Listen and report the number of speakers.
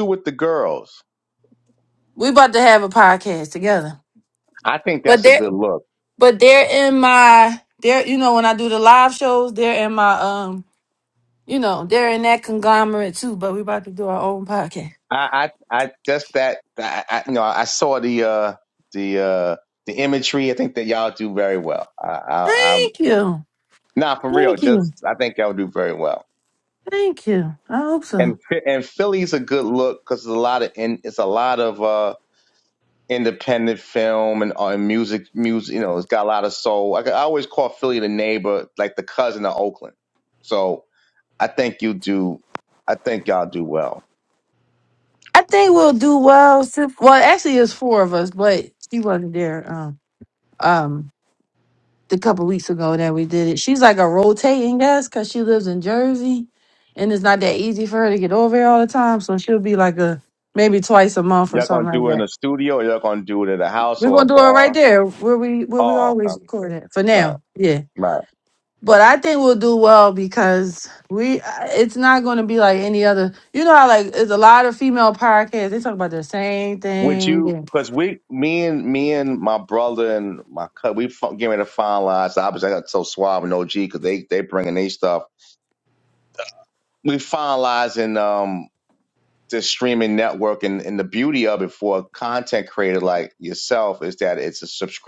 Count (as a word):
two